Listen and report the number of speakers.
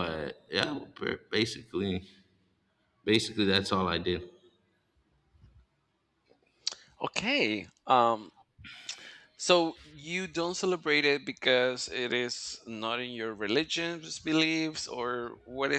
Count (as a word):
two